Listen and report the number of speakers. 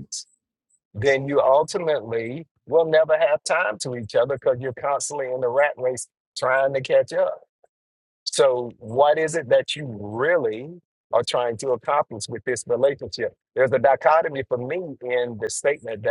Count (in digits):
1